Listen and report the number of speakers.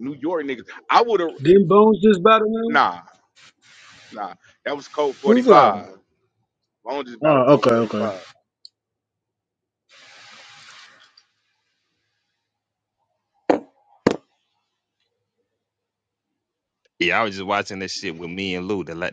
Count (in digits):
3